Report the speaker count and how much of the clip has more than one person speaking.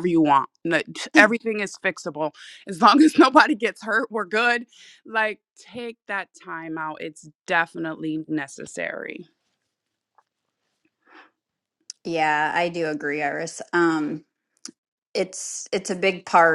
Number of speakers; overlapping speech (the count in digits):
2, no overlap